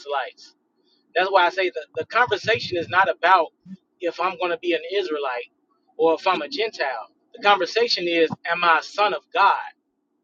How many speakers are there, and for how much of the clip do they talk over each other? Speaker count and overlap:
one, no overlap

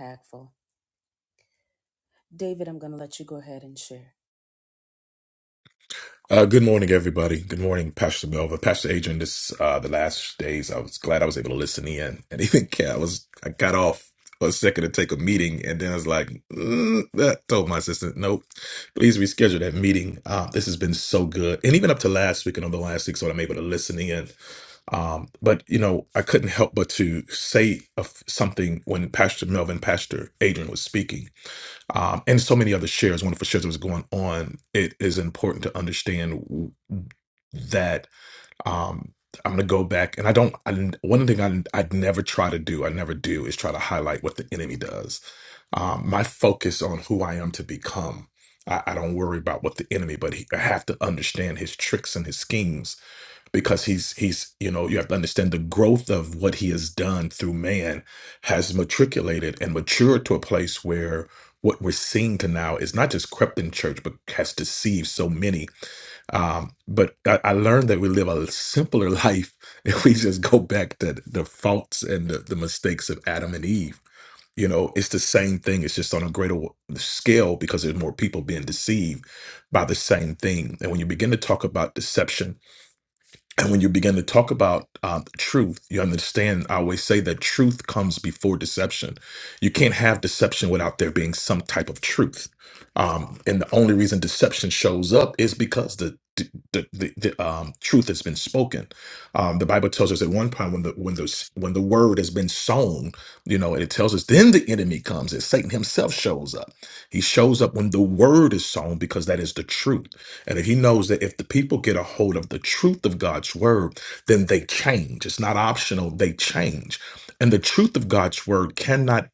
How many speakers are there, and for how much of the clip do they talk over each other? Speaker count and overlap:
two, no overlap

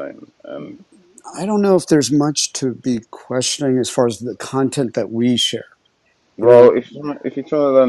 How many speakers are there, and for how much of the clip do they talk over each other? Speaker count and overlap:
two, about 4%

